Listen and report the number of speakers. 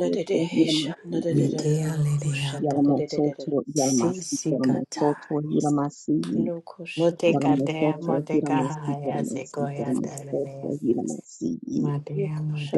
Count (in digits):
3